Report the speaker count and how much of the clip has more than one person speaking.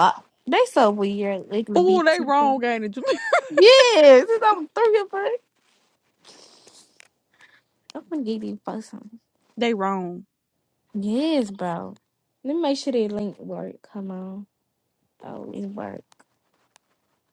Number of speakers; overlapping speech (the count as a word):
two, about 2%